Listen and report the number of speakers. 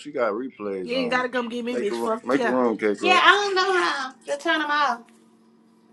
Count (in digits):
3